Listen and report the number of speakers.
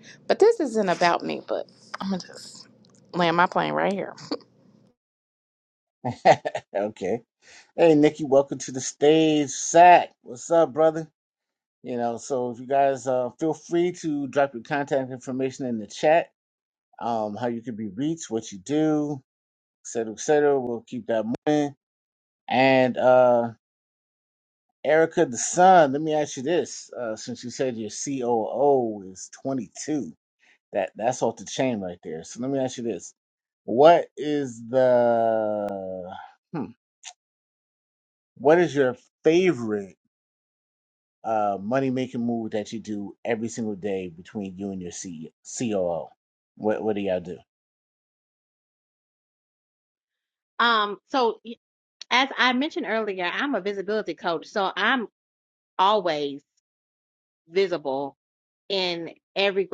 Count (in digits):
3